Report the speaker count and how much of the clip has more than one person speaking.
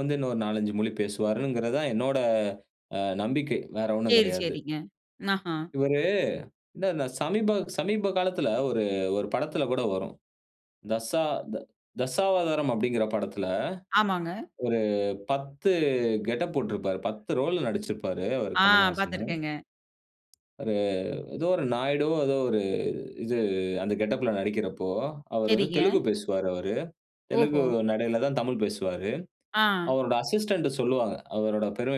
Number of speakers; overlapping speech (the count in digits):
2, about 6%